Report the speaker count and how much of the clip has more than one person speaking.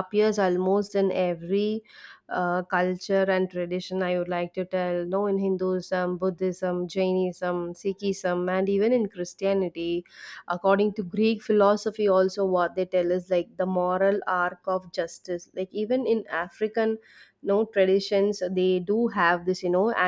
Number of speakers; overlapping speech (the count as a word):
one, no overlap